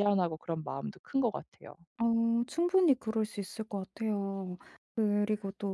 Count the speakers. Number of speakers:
2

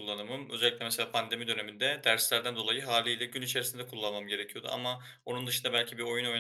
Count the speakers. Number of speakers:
1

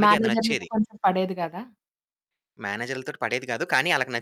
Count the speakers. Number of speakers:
2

